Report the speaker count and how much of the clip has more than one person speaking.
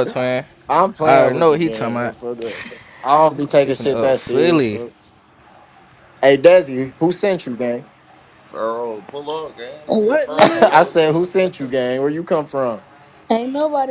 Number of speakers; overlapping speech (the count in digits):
4, about 29%